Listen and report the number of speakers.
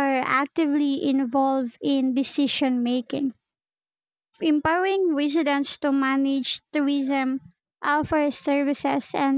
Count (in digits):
1